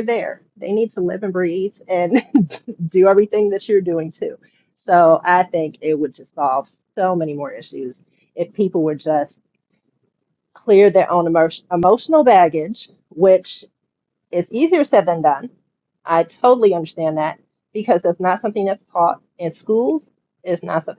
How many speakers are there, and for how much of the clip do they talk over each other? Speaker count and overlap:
one, no overlap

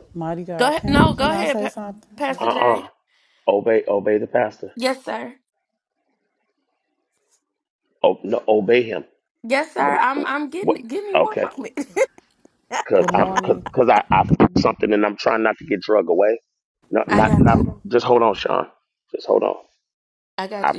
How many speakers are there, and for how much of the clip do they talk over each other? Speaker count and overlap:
three, about 19%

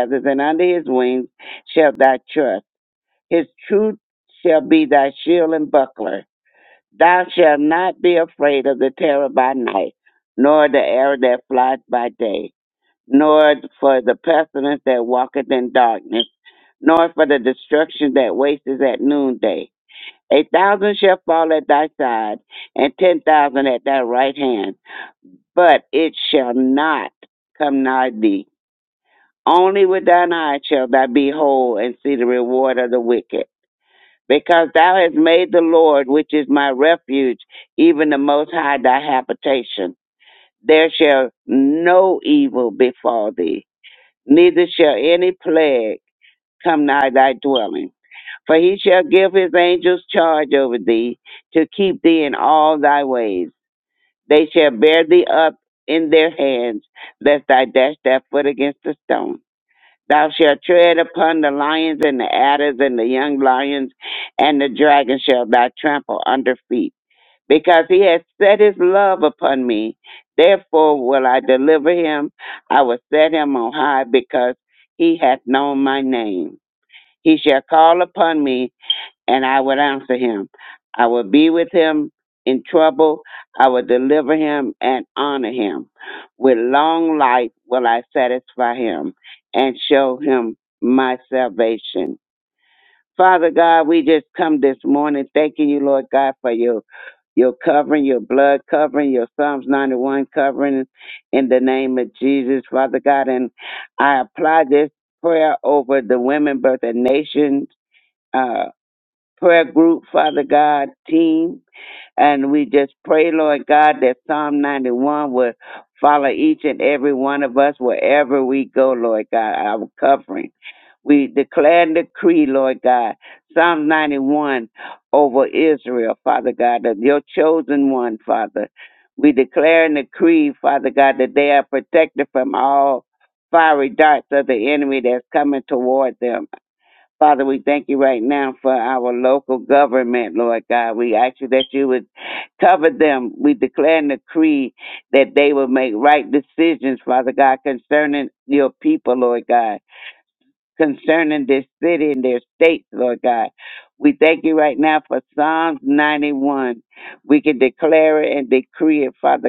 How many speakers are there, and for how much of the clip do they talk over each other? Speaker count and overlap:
one, no overlap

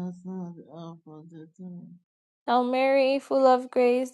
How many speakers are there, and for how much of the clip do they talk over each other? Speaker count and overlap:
two, no overlap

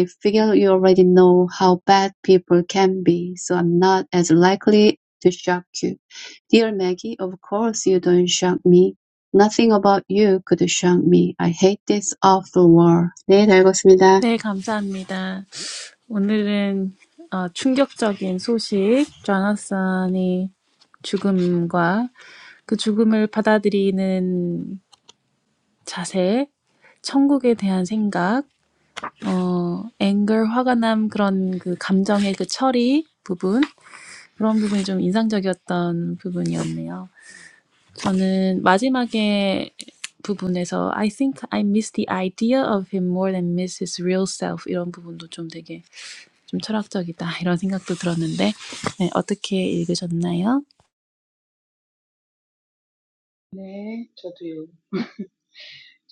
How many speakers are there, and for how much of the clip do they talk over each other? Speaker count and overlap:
three, under 1%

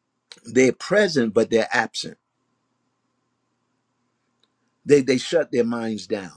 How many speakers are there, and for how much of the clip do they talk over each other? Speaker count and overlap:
one, no overlap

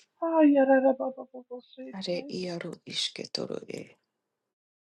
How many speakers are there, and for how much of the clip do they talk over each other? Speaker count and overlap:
two, about 8%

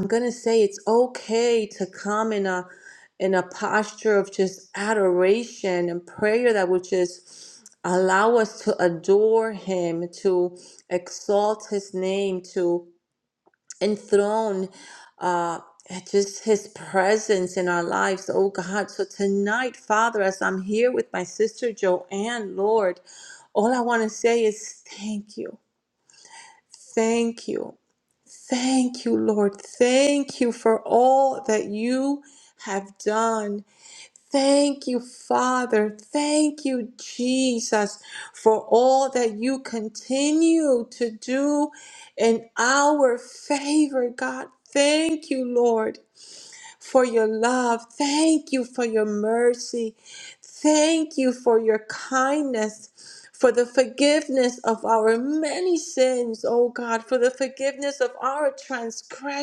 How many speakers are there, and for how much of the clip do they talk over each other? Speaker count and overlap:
one, no overlap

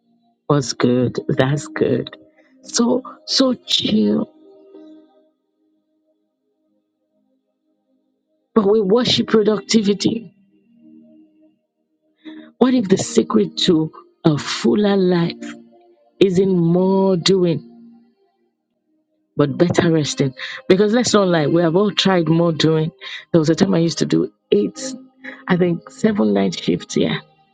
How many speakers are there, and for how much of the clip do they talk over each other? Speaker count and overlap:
one, no overlap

